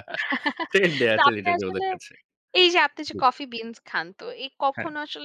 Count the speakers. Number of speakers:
2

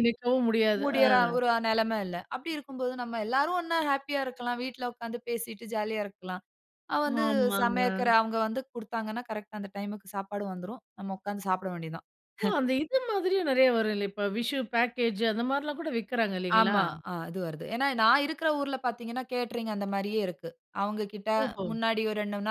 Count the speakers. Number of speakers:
2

